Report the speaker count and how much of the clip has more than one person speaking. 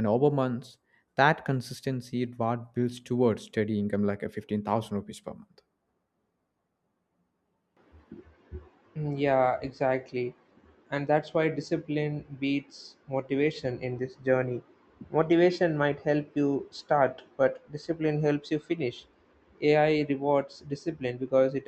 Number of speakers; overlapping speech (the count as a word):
two, no overlap